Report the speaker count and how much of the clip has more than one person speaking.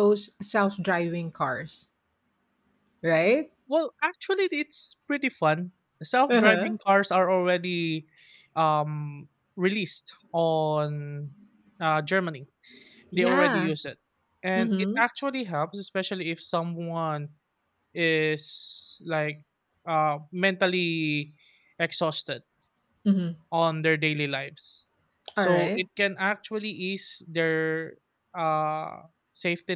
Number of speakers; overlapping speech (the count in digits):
2, about 6%